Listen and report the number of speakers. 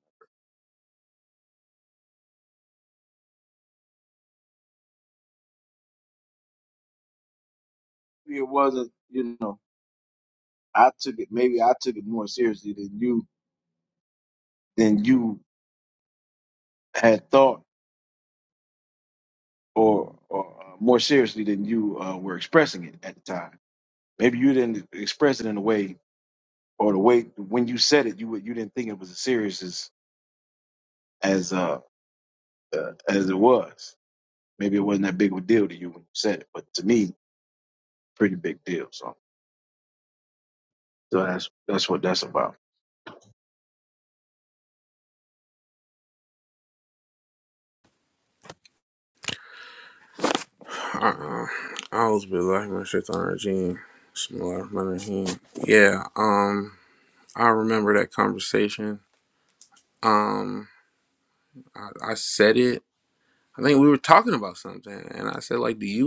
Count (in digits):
2